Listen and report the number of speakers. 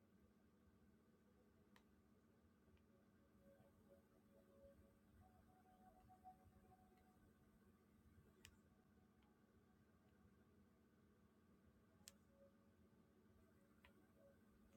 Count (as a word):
zero